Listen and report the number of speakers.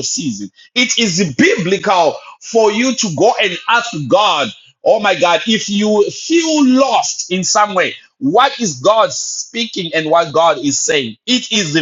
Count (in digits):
1